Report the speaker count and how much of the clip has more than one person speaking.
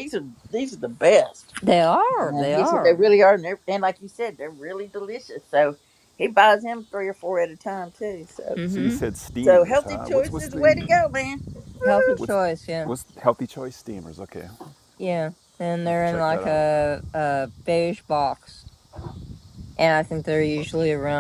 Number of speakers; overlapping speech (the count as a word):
three, about 16%